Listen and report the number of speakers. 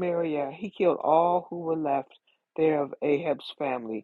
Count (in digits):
1